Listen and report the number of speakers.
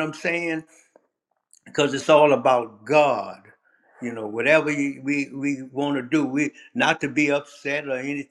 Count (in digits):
1